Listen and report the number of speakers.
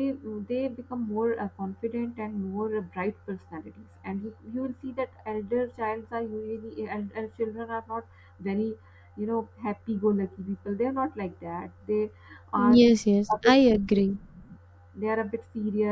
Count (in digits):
2